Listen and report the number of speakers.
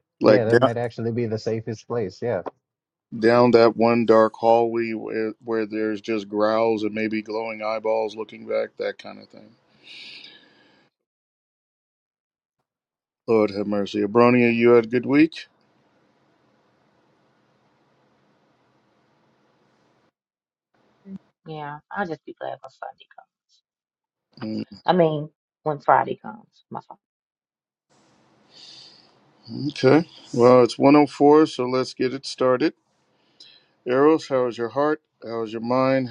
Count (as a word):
three